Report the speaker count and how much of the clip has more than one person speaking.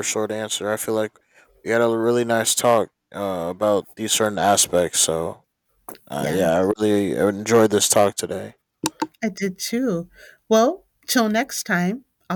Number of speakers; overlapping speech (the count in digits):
2, about 2%